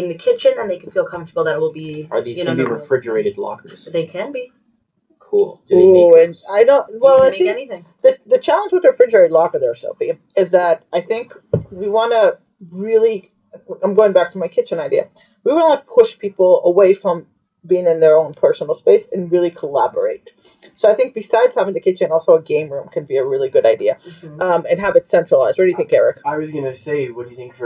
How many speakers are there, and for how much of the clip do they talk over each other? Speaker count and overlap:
4, about 10%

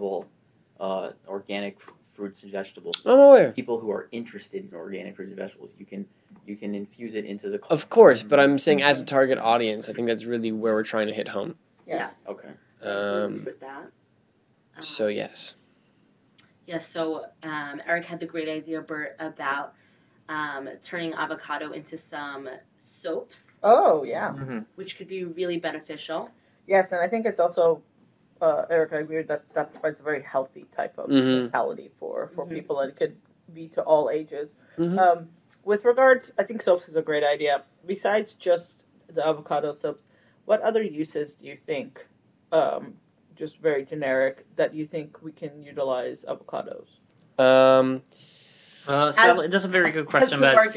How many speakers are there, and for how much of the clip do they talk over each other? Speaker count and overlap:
5, about 9%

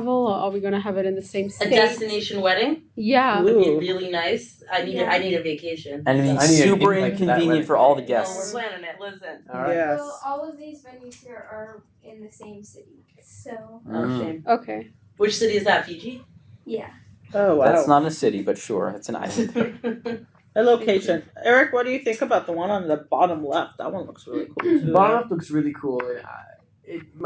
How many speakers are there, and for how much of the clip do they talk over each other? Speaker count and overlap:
6, about 23%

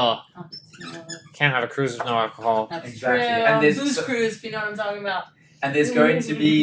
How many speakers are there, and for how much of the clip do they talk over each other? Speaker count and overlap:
3, about 19%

